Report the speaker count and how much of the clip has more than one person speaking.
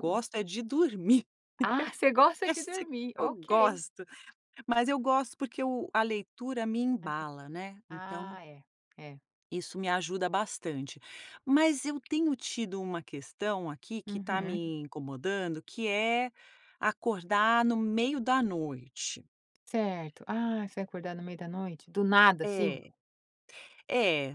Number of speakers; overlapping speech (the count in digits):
2, about 10%